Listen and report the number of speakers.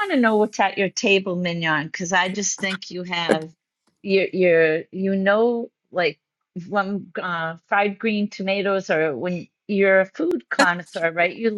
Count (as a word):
one